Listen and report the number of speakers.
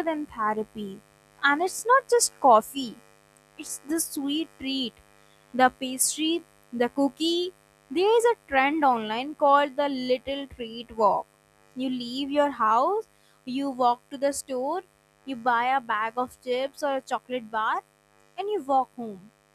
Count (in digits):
1